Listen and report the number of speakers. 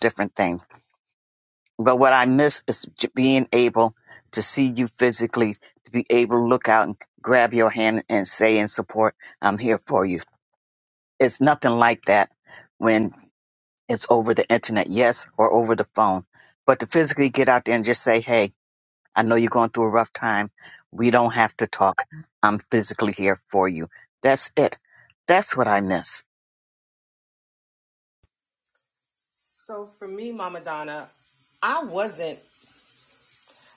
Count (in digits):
2